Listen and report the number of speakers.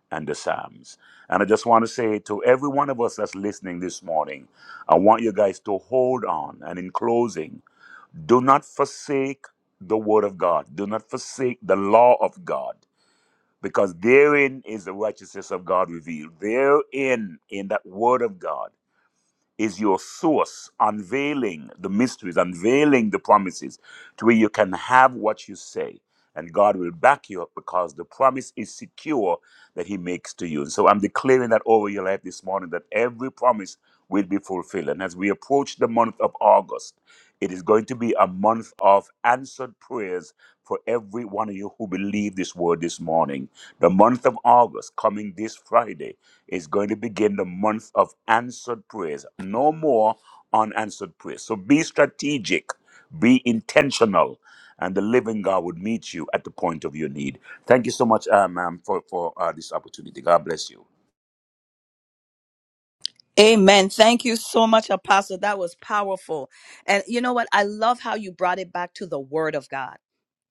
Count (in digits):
2